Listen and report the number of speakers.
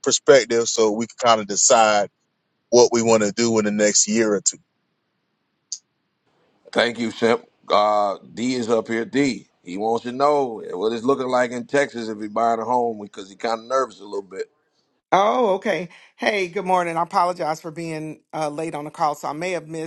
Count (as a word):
three